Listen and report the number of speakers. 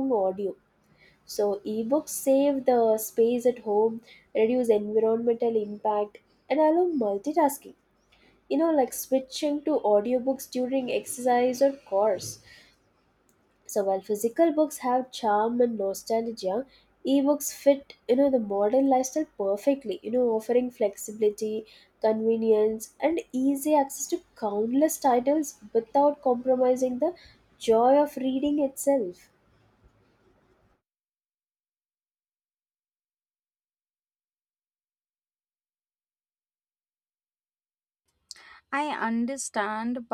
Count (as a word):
two